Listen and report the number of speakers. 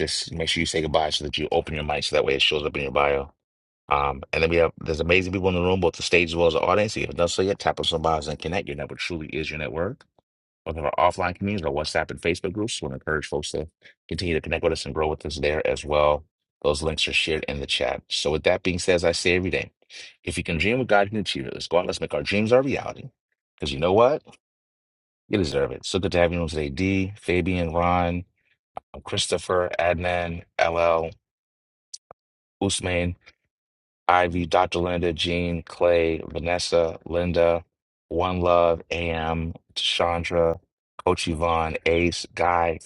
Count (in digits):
1